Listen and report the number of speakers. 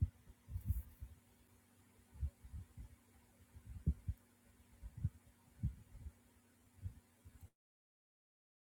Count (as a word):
zero